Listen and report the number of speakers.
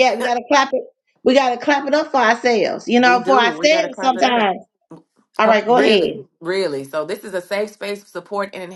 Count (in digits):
2